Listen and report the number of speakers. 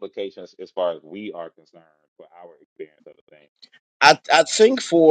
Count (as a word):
two